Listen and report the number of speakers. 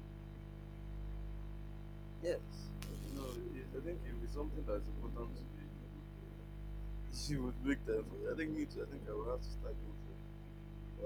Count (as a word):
one